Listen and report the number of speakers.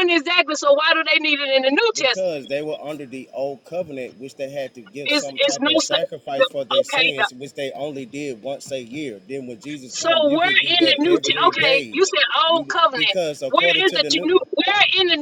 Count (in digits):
2